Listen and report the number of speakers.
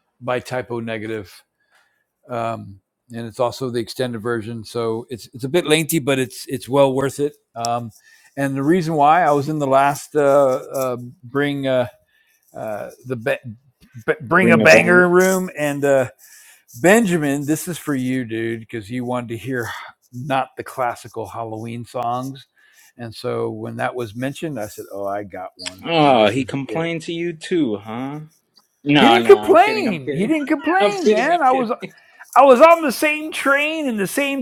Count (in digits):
2